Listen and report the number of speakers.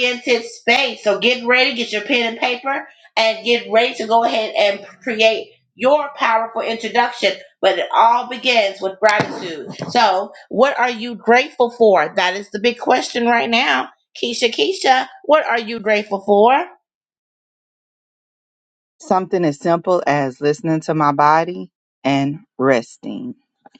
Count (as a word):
two